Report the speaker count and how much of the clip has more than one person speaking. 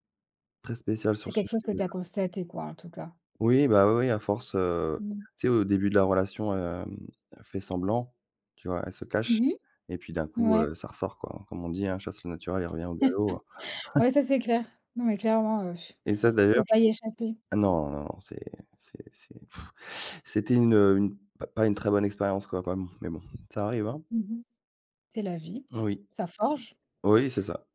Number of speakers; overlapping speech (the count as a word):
two, about 5%